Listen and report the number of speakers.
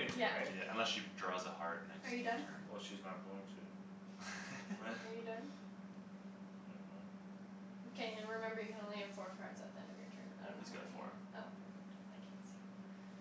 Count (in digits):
3